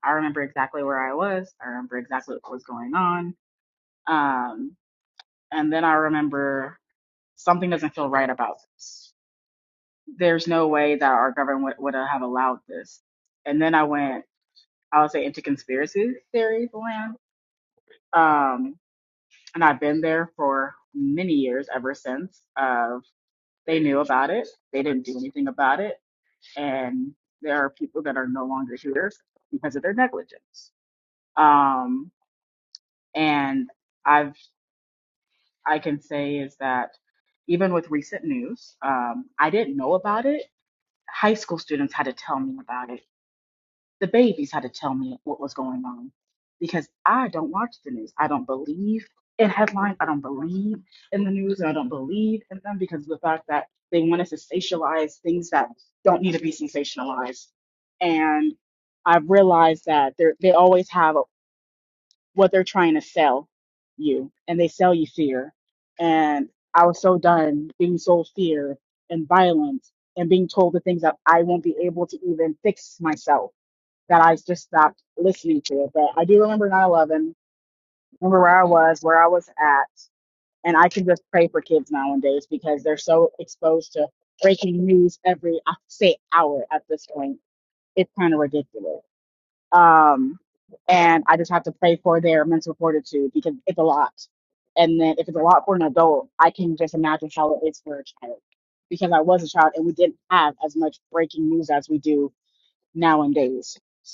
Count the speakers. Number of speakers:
1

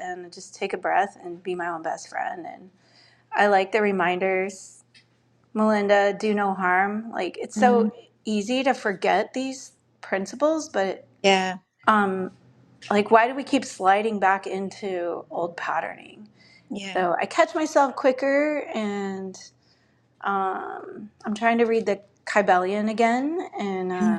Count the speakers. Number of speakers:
2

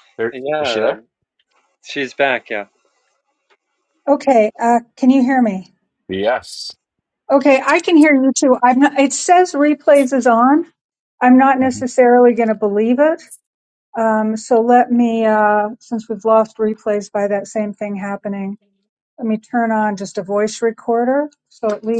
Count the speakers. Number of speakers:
3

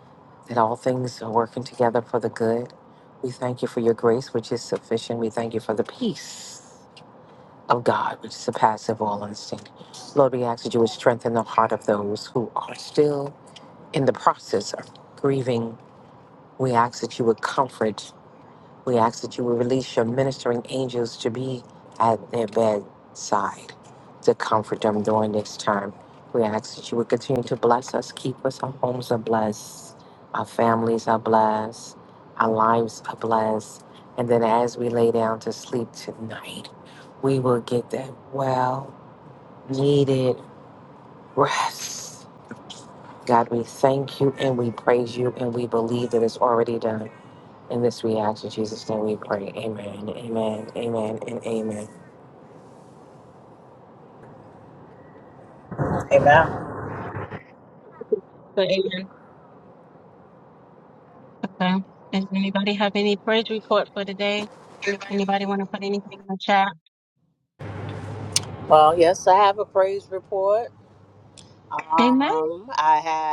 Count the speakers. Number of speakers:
3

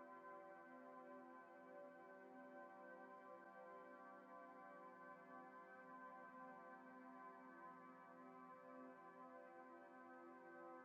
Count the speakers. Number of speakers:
0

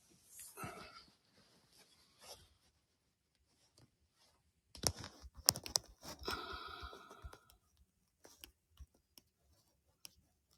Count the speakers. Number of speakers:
0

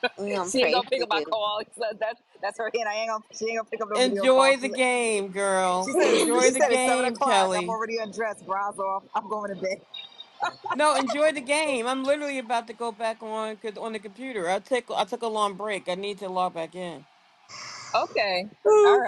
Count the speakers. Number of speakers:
3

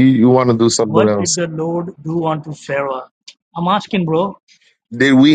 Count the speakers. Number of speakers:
2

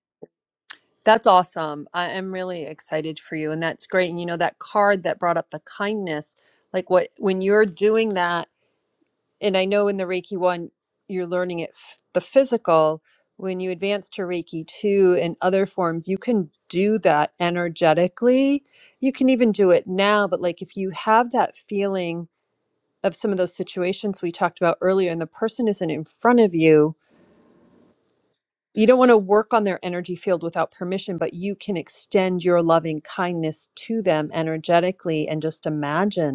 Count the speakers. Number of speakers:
1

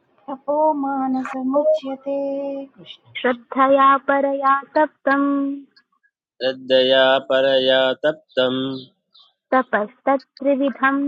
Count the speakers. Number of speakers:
3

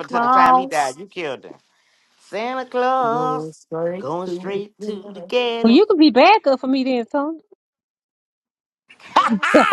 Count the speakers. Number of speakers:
3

